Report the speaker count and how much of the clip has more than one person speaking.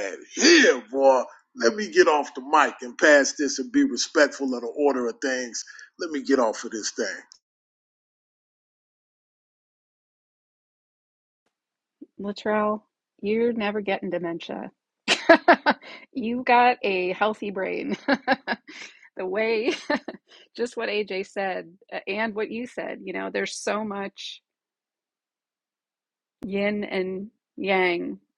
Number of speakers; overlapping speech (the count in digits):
2, no overlap